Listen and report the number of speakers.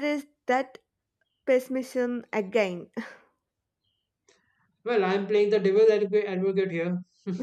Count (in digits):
2